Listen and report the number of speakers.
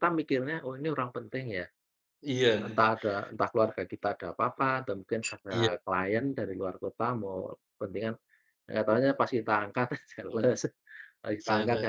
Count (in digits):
2